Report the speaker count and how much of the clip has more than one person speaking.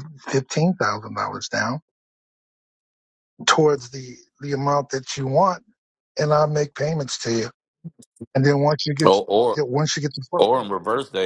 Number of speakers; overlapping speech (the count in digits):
2, about 3%